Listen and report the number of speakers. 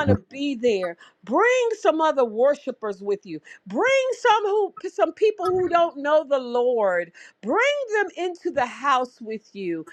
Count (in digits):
1